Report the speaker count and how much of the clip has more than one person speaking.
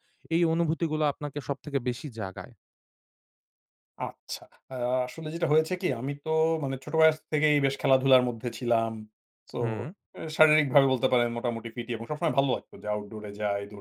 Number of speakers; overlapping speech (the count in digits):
2, under 1%